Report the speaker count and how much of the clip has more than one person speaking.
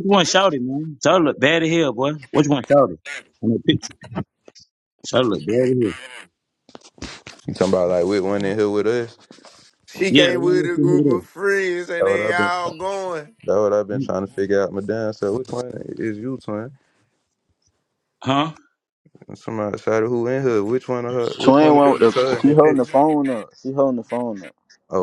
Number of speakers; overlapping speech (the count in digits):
4, about 14%